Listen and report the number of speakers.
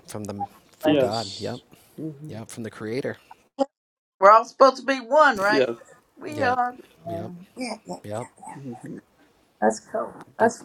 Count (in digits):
3